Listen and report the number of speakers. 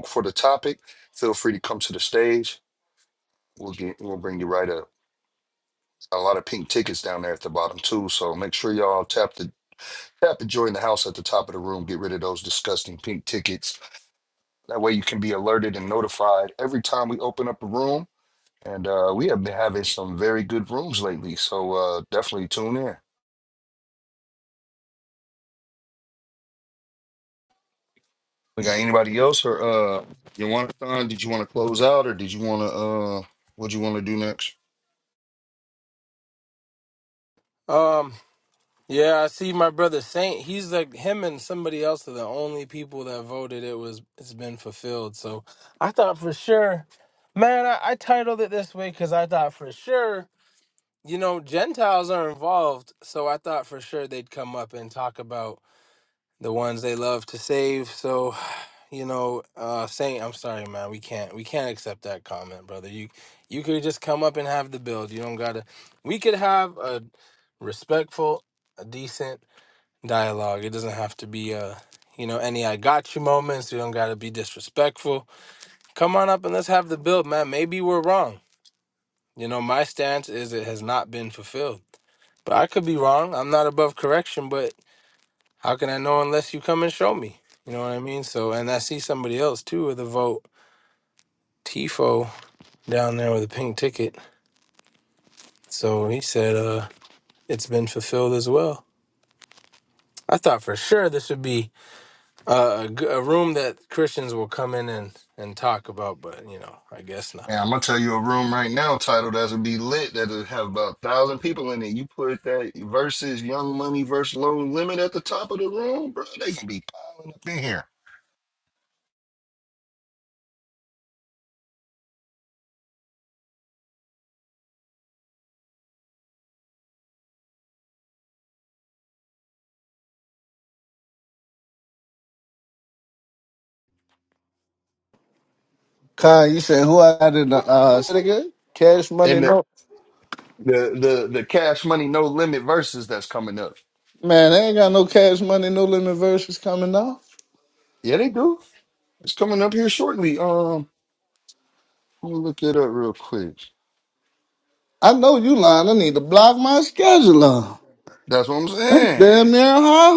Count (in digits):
3